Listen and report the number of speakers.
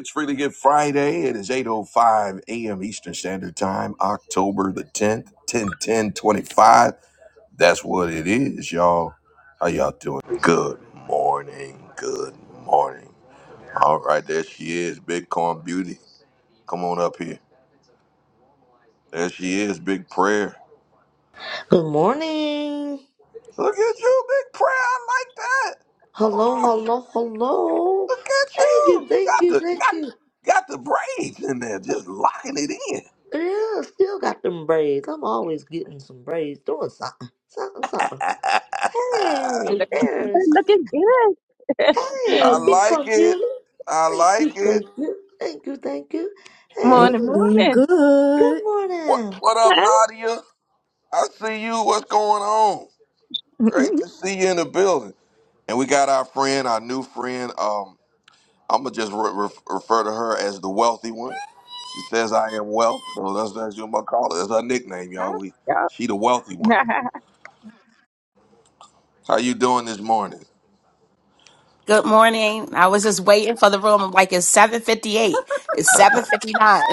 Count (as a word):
five